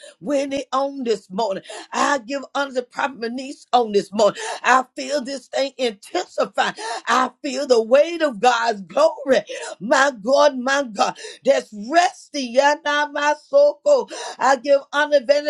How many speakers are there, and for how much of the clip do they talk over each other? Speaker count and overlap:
one, no overlap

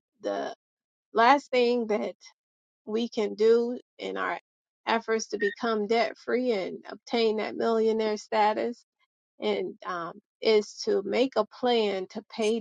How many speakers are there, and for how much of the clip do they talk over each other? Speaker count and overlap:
one, no overlap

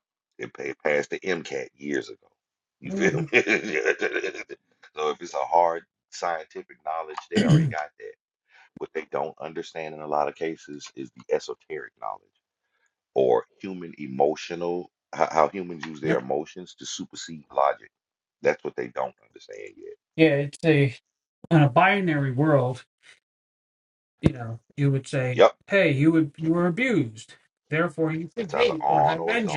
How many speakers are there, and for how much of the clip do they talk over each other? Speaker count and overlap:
two, about 5%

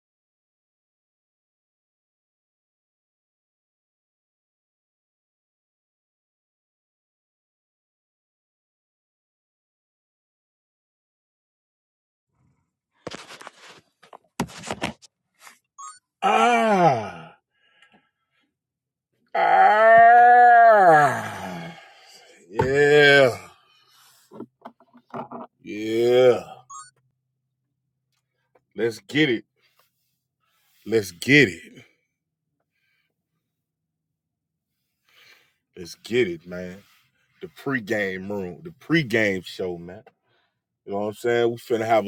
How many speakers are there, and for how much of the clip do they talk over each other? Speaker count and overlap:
one, no overlap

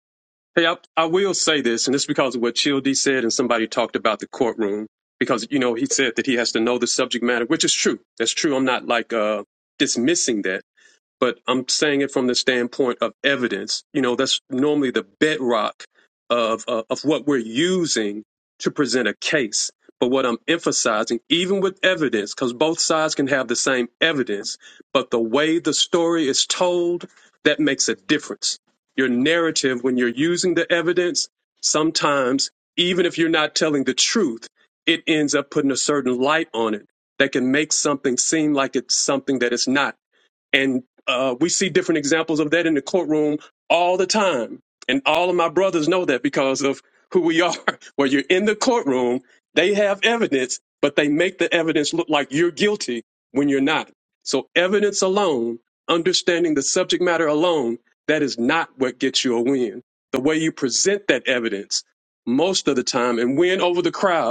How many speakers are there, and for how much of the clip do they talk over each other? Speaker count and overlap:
one, no overlap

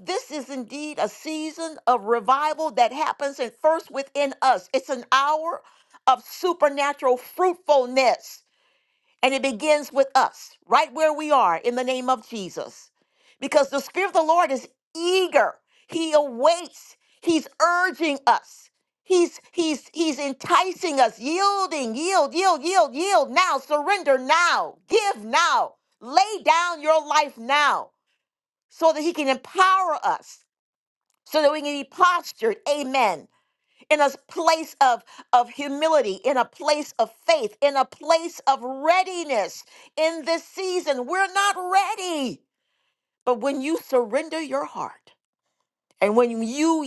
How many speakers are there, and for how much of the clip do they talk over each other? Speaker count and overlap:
one, no overlap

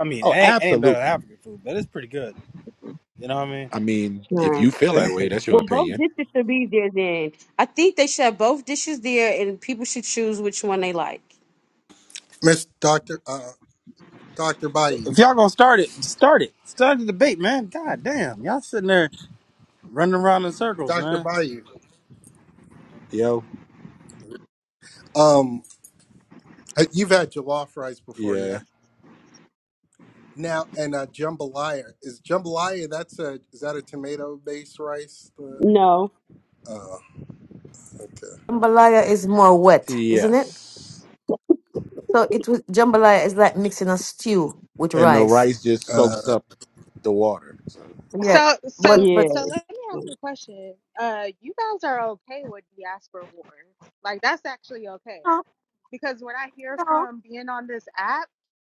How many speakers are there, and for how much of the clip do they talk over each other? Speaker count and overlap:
six, about 8%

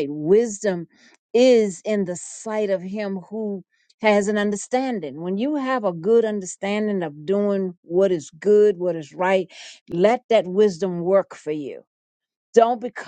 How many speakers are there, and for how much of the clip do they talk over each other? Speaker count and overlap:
one, no overlap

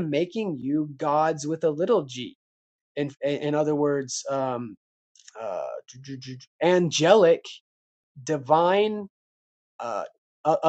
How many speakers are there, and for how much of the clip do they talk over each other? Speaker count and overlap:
one, no overlap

